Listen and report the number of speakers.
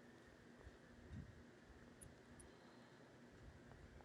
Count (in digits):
0